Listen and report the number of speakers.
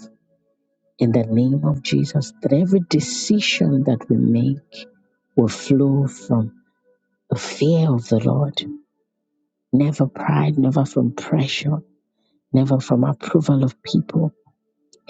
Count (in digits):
1